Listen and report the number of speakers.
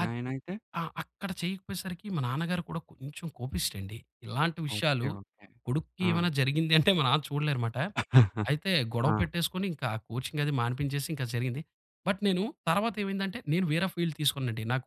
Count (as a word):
two